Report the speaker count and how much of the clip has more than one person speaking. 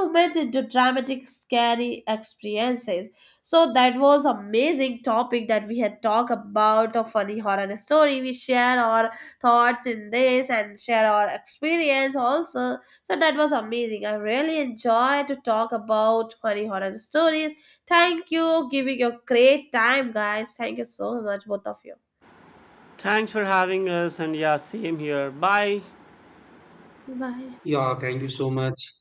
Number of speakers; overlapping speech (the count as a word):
three, no overlap